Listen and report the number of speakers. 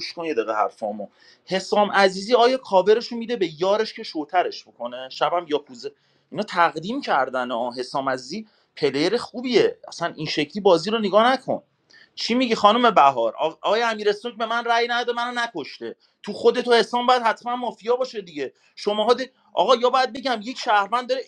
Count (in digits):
1